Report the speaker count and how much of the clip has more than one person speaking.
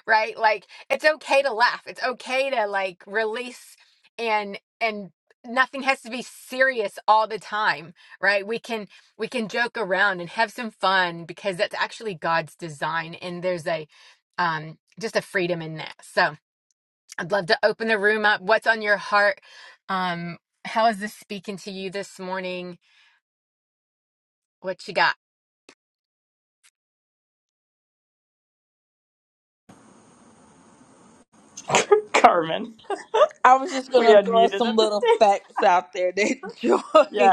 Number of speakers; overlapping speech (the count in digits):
3, about 4%